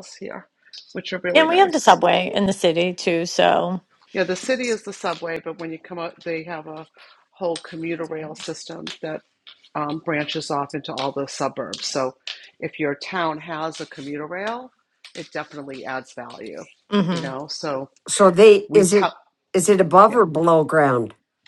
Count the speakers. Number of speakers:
3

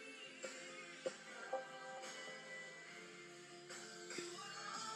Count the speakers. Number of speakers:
0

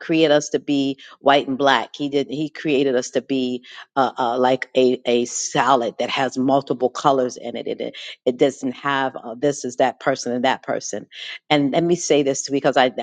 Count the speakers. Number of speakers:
1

